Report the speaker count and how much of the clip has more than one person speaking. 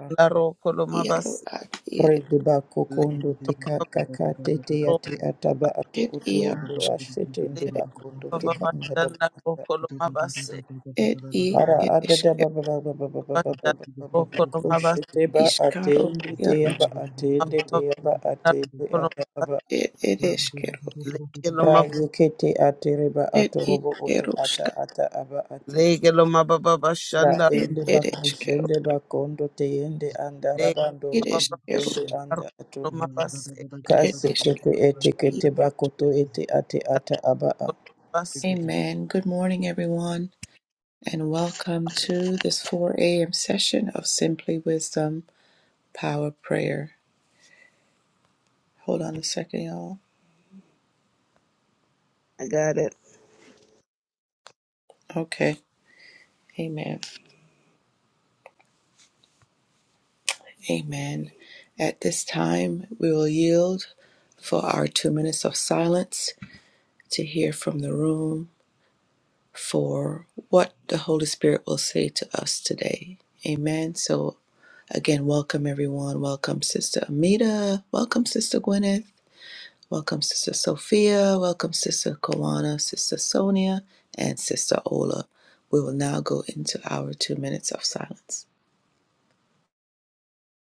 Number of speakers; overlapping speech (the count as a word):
three, about 14%